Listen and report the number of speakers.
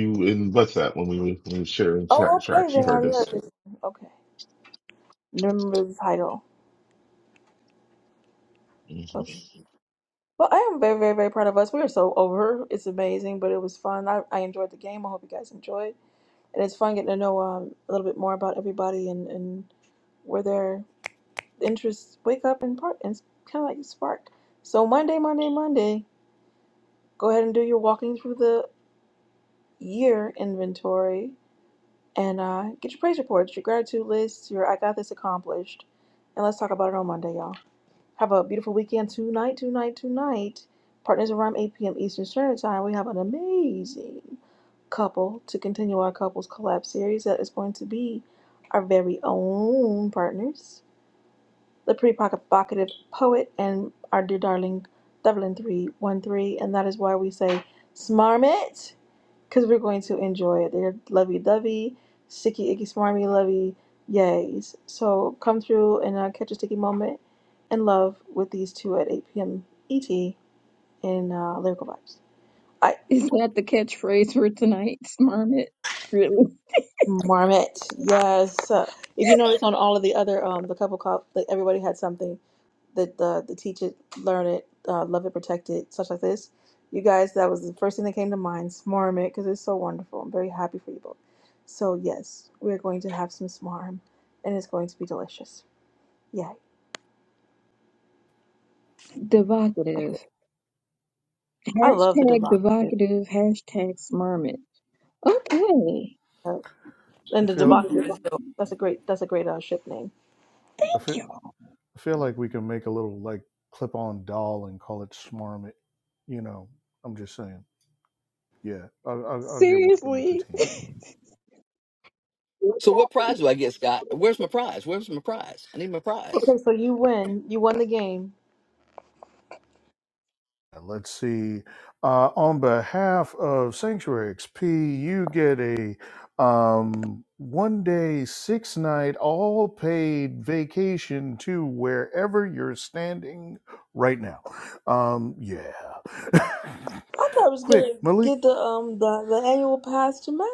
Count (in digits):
5